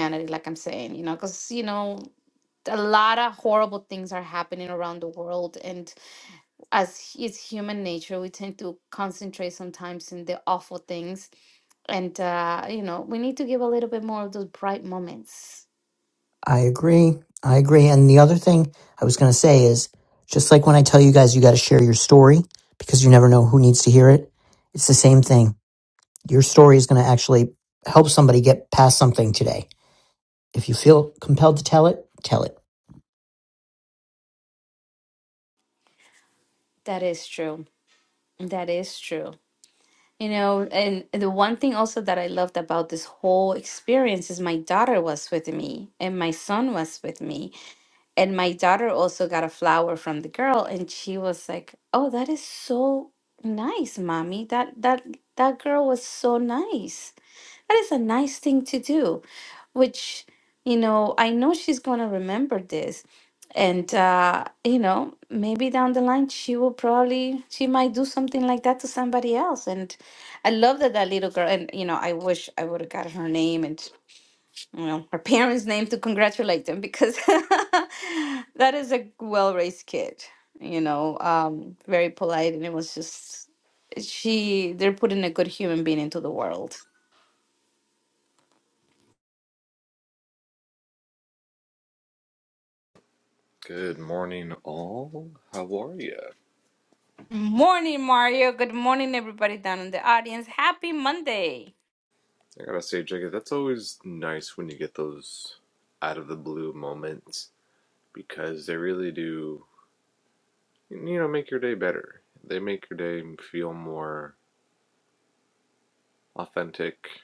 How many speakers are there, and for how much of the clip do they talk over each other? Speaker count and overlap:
three, no overlap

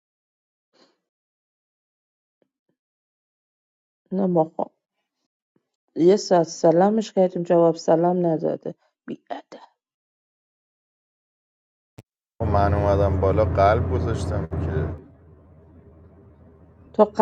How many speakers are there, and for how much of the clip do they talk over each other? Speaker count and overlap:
two, no overlap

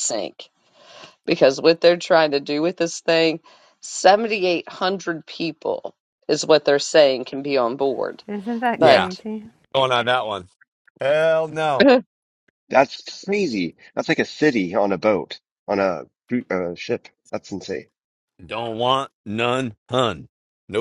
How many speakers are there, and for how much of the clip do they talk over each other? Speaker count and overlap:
four, about 2%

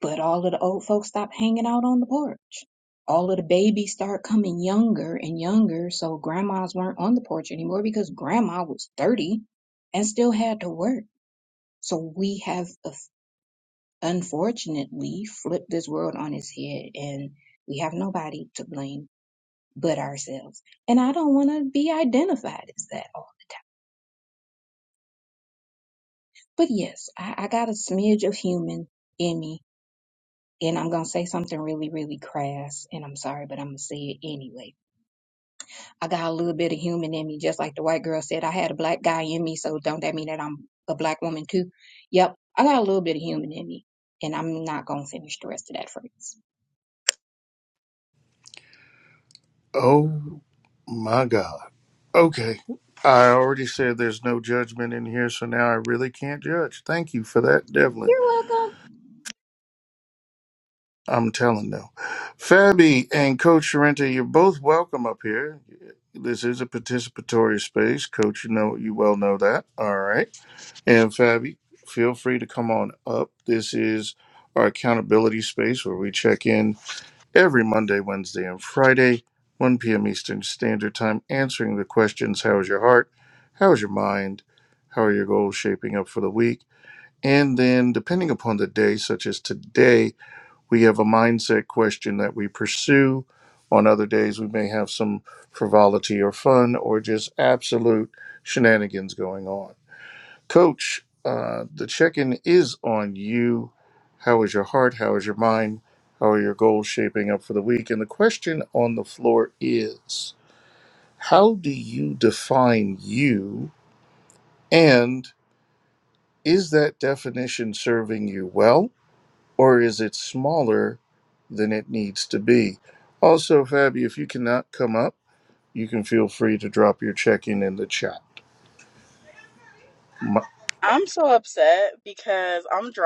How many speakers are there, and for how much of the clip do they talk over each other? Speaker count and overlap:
three, under 1%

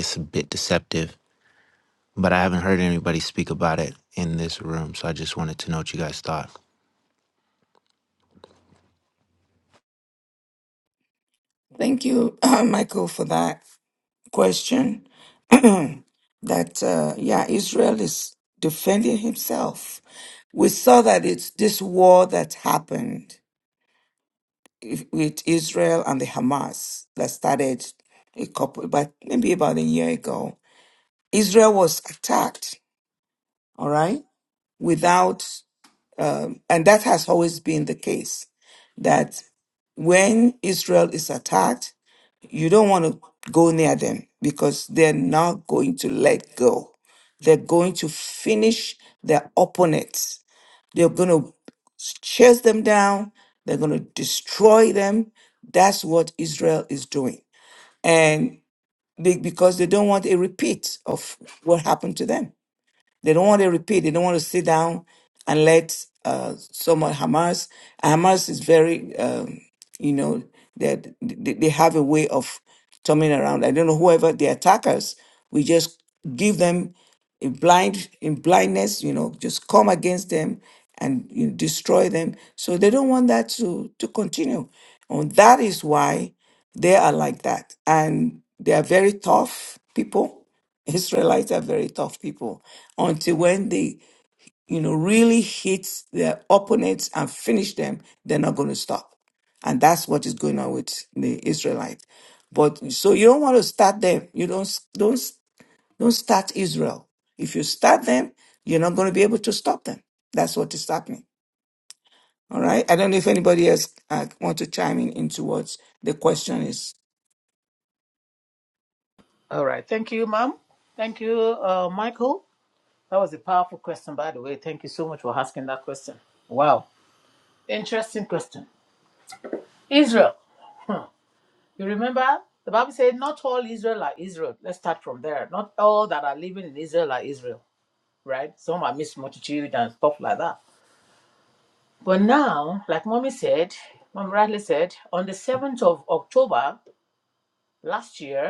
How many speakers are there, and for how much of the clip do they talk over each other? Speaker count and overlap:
three, no overlap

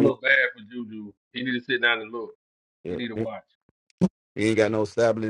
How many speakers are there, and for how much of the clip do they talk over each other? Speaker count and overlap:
two, about 4%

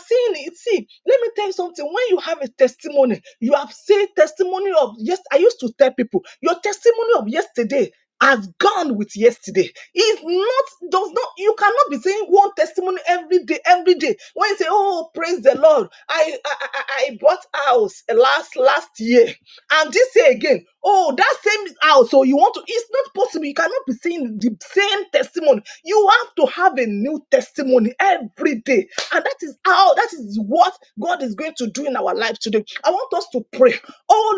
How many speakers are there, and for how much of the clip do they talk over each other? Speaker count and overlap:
one, no overlap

